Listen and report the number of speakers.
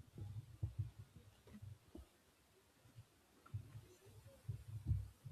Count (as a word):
zero